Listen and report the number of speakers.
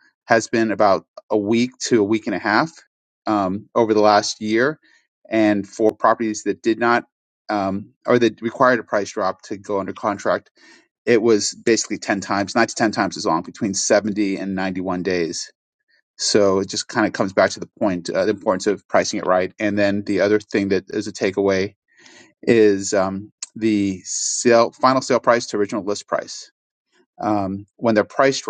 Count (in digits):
1